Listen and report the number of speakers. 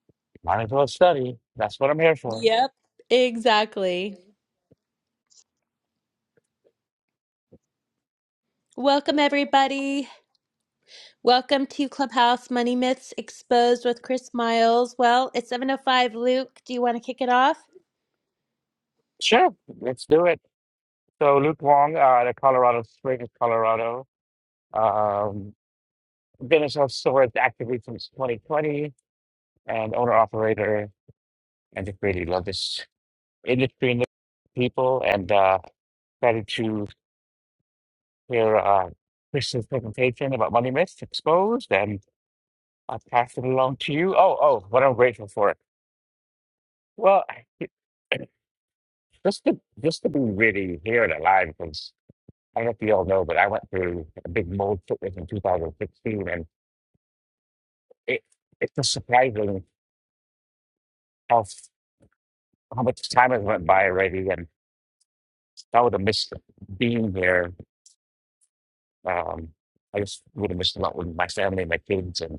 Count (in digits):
2